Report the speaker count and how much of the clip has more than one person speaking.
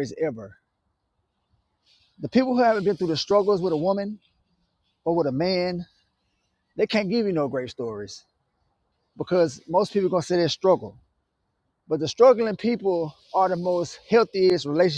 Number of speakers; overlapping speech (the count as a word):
one, no overlap